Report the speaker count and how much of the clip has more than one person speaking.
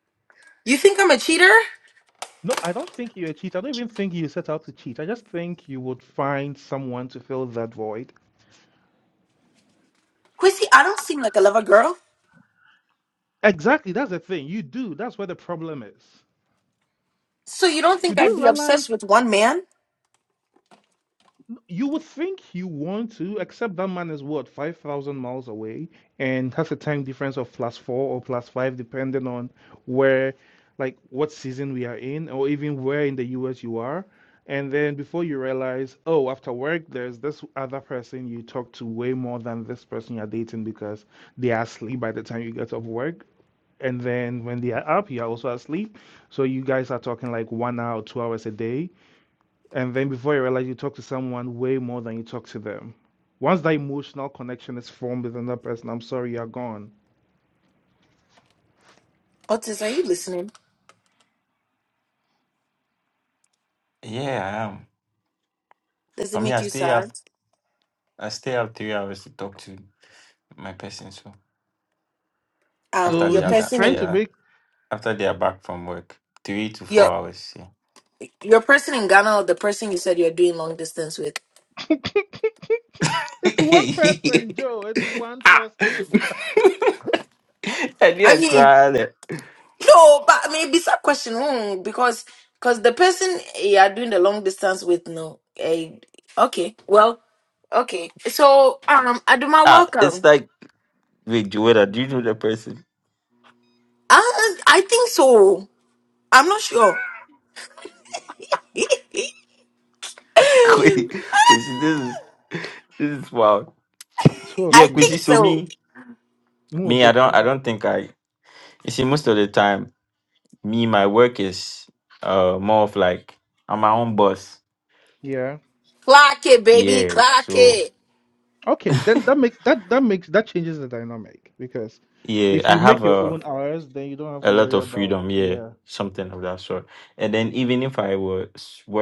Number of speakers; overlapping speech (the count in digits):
3, about 6%